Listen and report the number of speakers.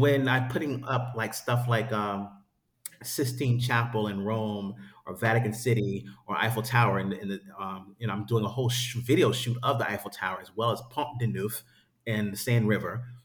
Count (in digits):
1